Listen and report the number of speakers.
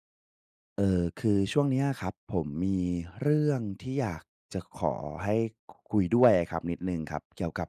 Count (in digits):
1